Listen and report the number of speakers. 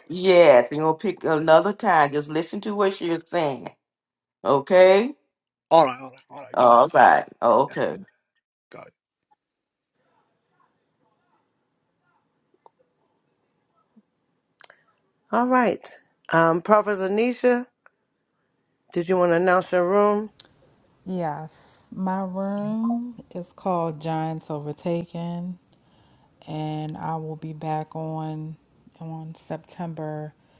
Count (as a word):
four